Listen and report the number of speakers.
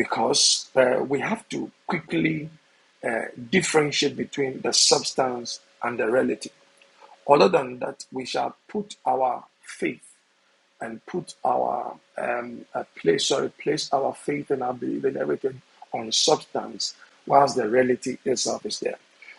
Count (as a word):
one